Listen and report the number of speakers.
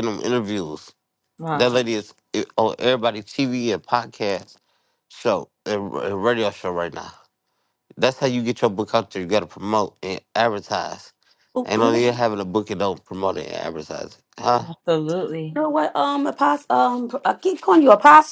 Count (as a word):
three